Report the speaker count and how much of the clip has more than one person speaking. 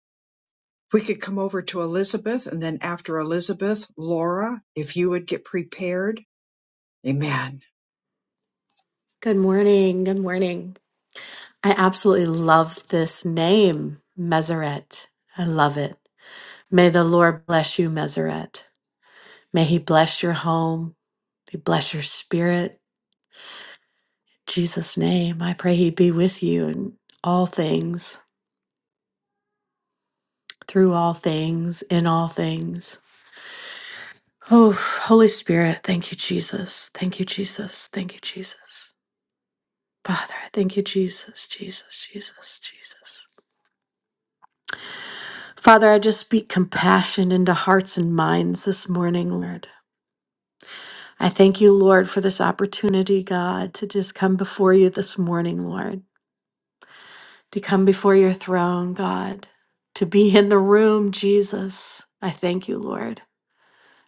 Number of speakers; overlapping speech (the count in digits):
2, no overlap